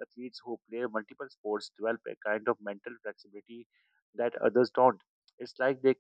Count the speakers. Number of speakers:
one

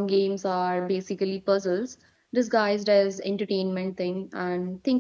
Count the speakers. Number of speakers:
one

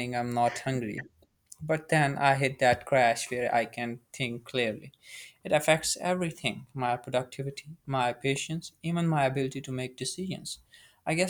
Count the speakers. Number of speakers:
one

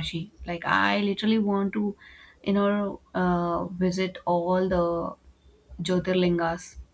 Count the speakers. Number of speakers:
one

